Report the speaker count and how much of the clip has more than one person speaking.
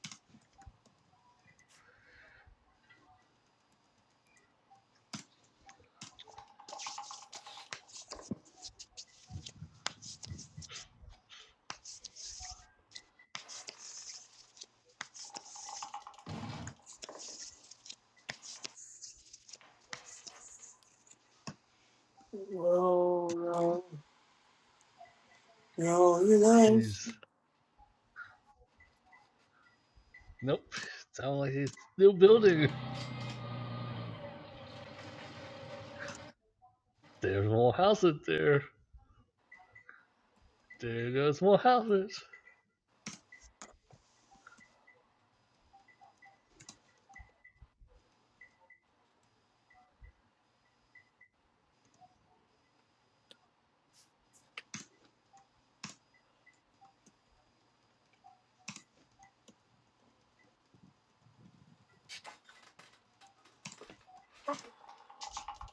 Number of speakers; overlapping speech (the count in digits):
2, under 1%